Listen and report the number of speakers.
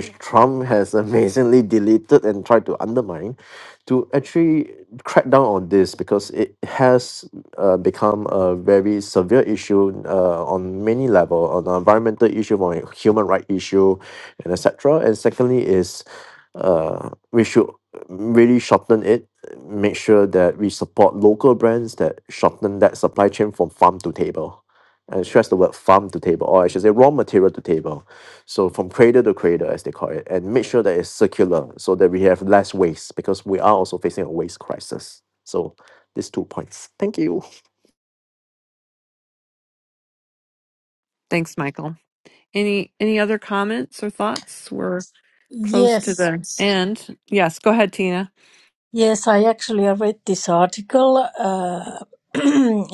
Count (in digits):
3